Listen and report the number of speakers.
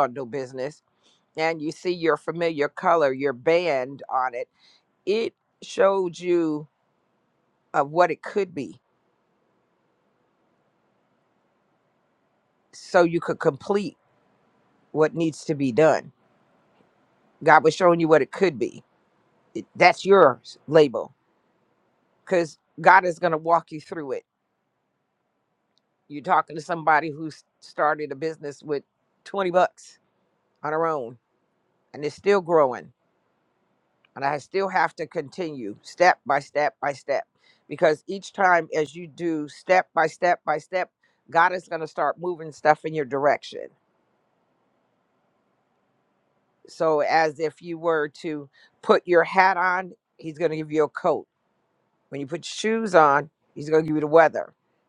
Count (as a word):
one